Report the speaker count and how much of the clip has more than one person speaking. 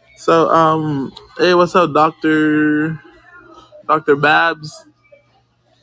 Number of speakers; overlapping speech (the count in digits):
1, no overlap